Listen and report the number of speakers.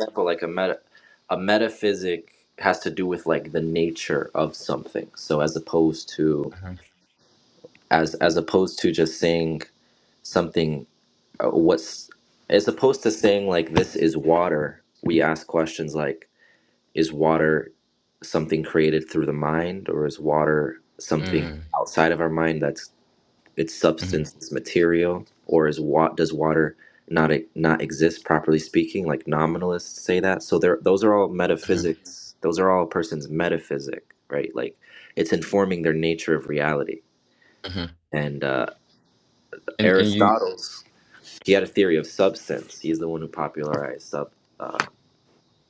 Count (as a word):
two